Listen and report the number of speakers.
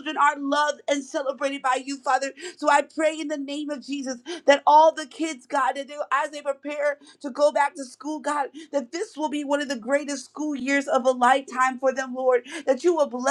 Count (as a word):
one